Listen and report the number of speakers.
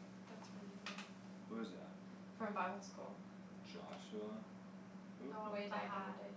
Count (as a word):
three